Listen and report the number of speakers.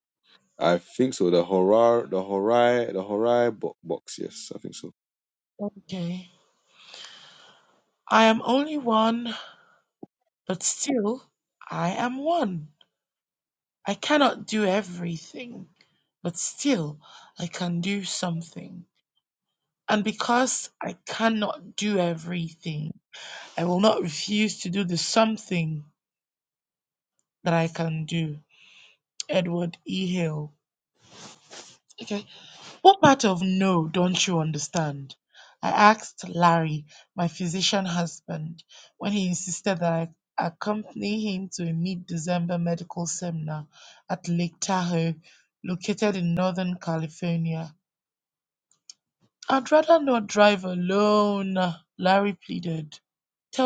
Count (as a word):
two